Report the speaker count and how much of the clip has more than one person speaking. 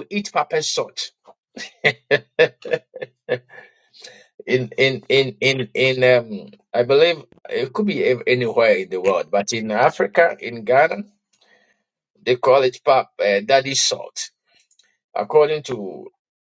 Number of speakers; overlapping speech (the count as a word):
one, no overlap